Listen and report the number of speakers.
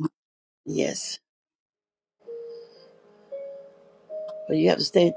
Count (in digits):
1